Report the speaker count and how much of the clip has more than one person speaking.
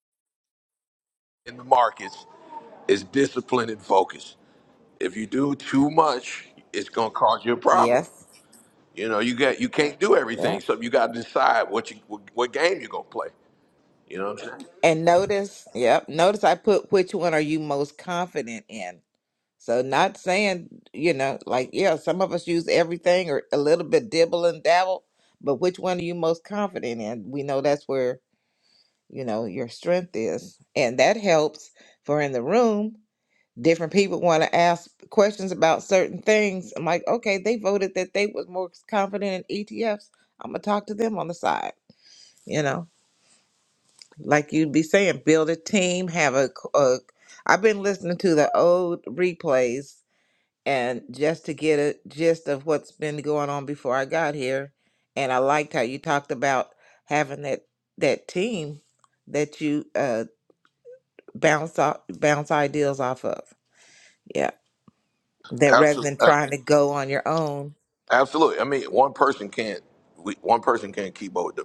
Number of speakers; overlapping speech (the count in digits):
2, about 2%